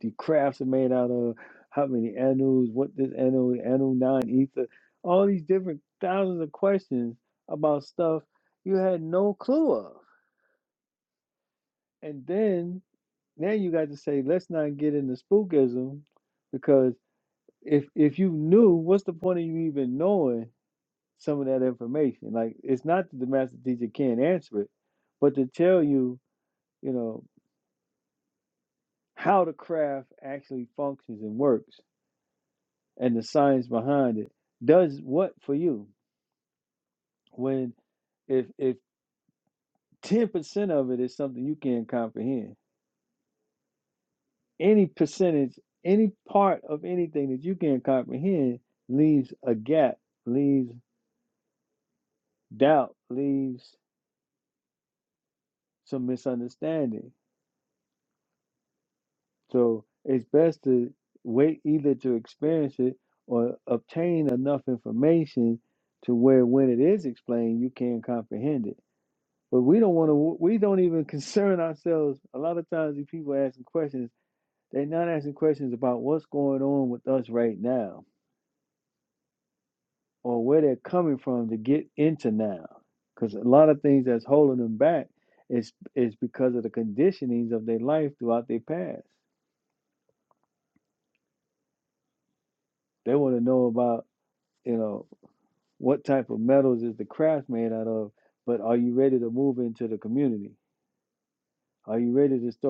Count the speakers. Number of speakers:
1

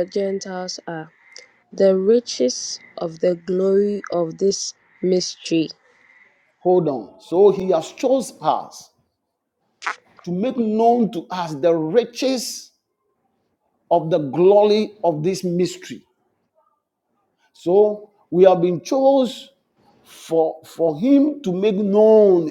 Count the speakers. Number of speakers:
2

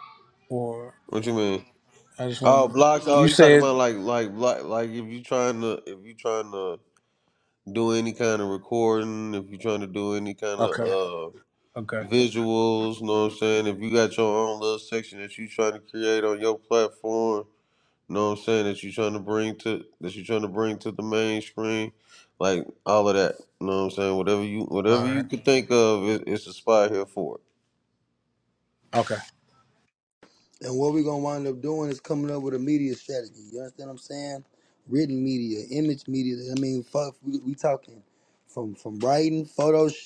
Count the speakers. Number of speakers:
3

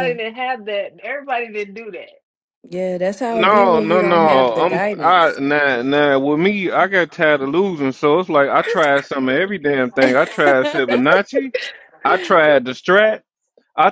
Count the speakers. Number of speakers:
3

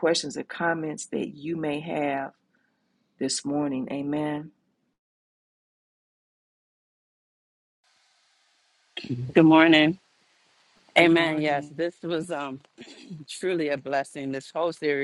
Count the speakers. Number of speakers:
2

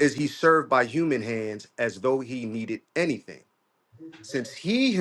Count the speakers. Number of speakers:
1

